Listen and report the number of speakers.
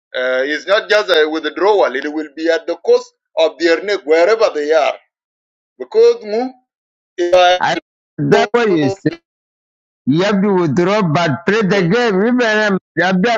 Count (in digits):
2